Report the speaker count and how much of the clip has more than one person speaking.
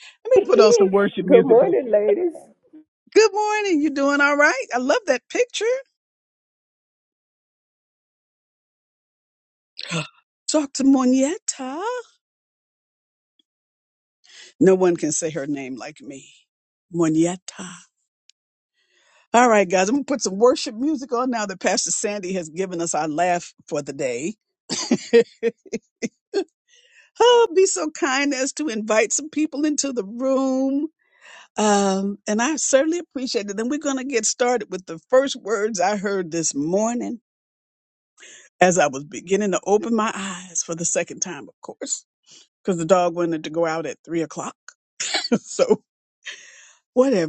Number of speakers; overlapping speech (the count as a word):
two, about 1%